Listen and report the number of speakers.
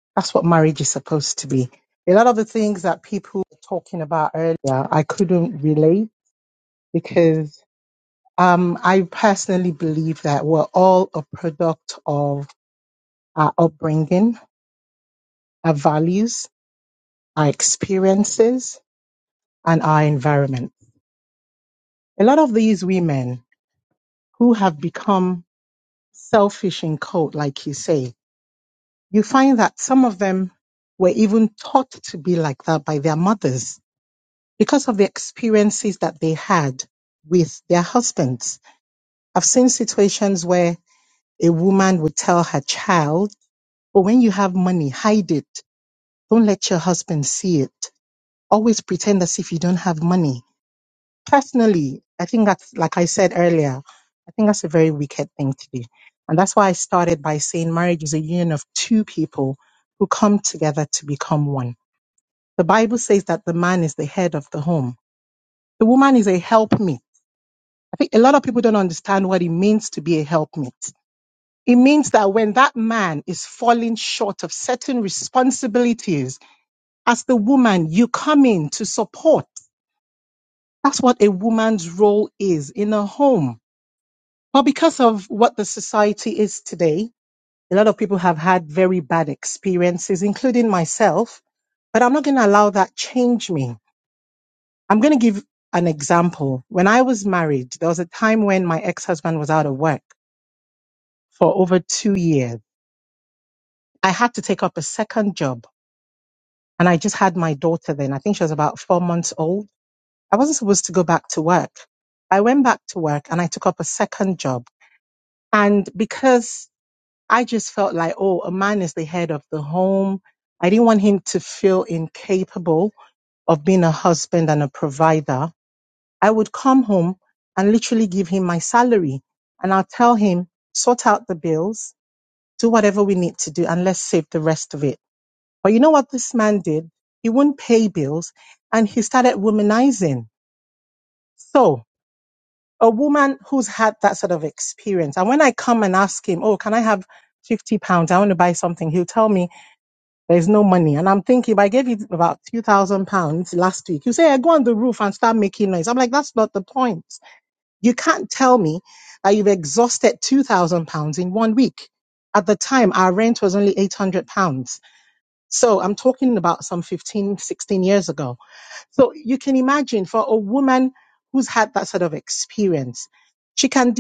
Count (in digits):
1